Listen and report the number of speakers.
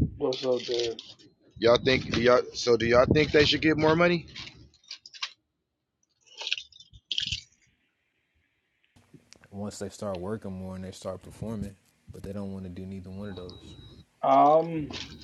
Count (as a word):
three